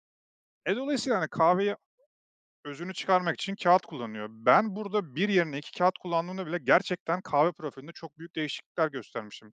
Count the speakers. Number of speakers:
1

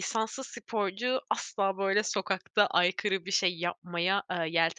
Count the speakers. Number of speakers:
1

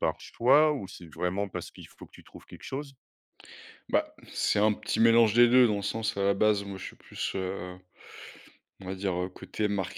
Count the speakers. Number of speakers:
2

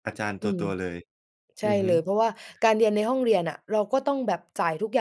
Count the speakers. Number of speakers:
2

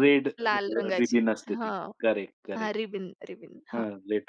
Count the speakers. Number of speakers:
2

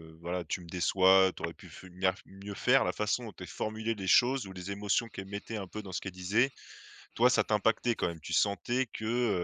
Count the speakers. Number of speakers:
1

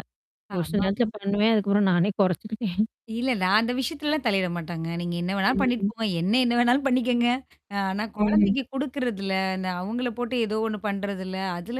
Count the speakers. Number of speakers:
2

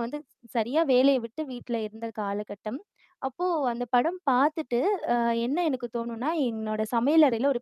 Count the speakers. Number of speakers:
1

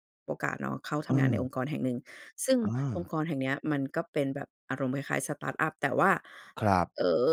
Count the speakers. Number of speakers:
2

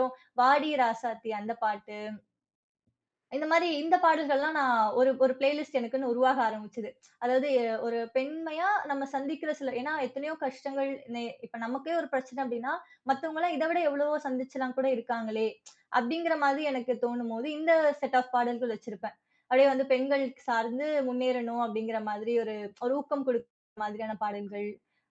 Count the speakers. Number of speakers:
1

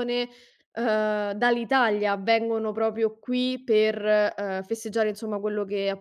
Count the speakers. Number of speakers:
1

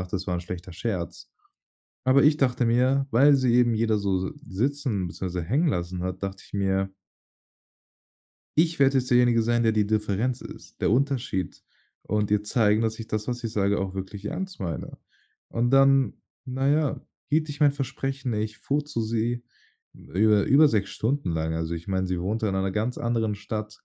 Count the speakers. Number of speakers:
1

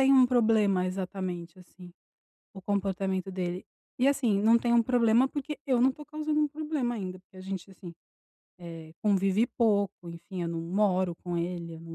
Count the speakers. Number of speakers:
1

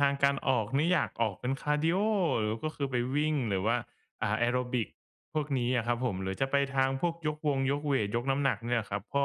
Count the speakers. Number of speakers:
1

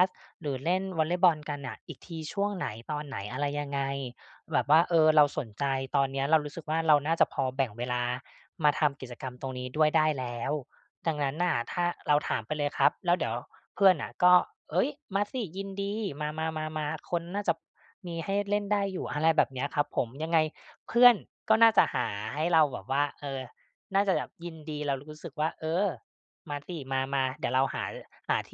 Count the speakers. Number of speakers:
1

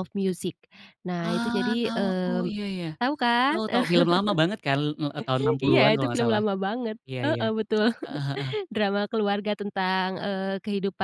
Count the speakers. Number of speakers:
2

